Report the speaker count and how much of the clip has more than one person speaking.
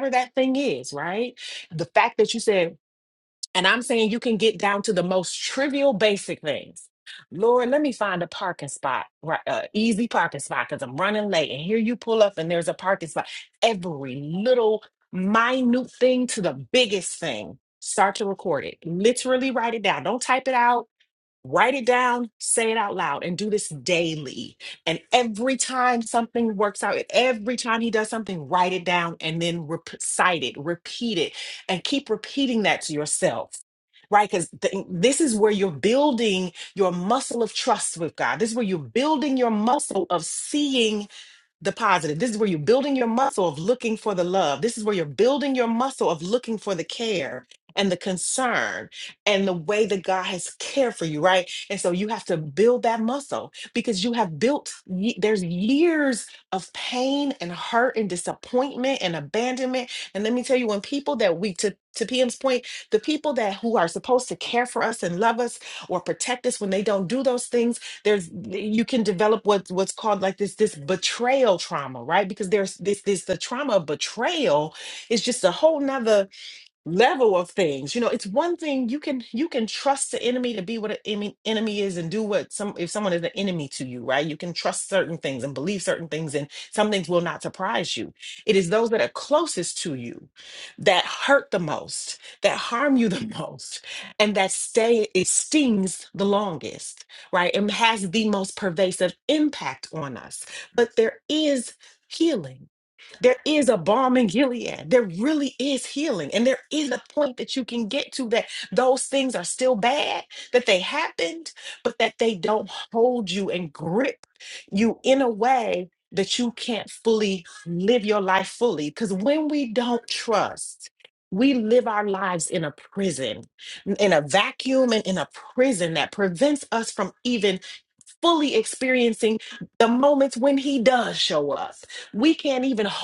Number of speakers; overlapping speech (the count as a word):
one, no overlap